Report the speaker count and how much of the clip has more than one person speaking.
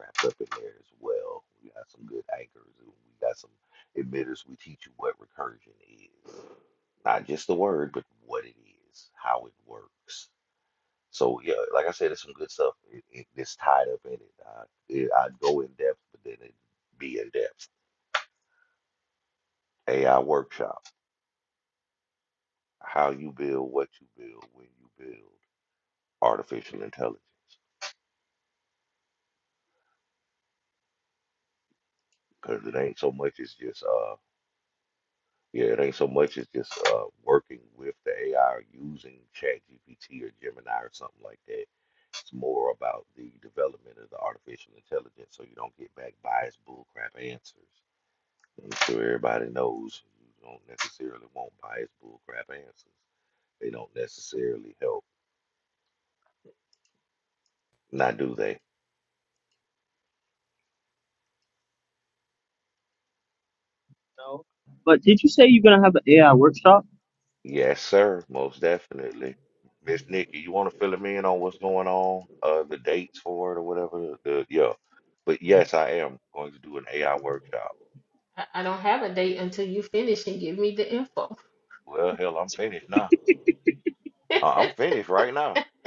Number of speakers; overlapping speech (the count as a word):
three, no overlap